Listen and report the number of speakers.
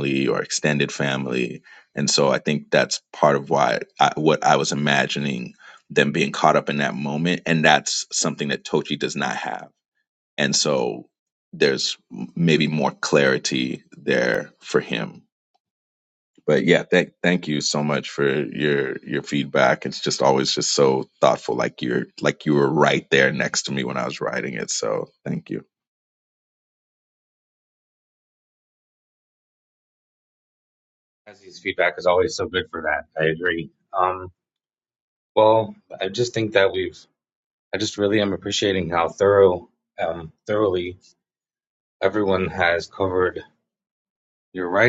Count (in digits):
2